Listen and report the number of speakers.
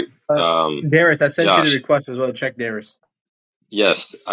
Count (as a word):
two